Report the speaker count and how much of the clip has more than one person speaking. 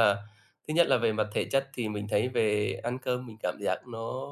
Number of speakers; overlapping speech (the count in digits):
1, no overlap